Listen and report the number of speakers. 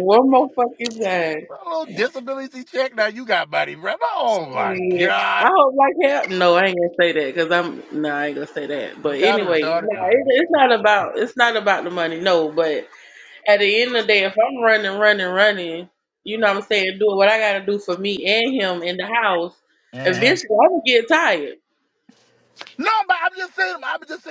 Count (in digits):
2